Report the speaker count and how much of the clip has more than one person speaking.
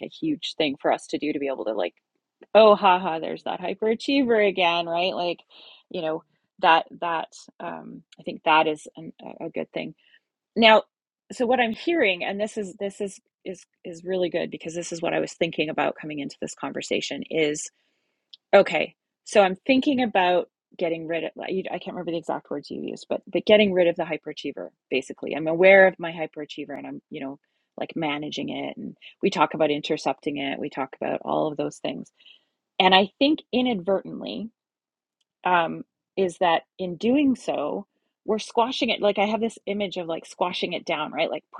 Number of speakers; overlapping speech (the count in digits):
1, no overlap